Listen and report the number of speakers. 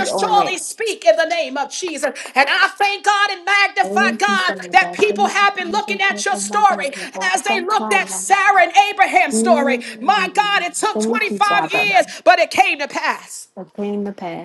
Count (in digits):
2